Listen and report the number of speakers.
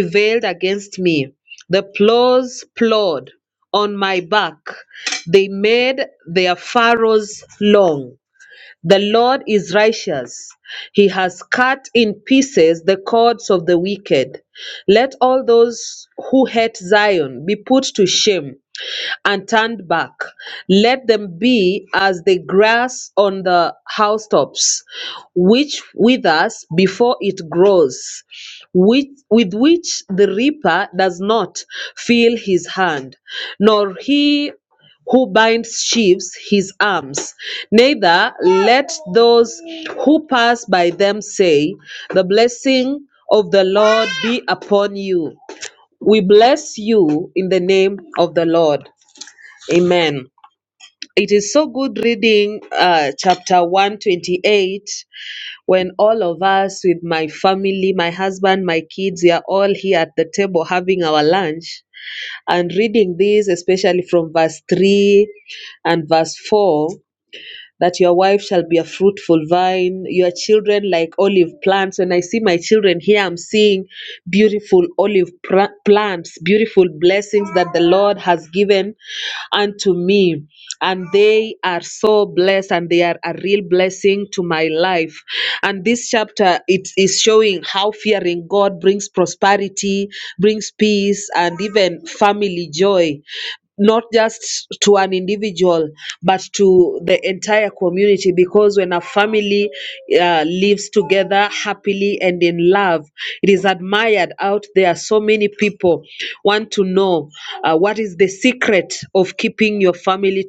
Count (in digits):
1